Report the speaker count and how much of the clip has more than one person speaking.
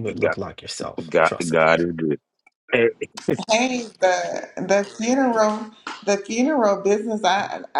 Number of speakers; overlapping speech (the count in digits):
3, about 9%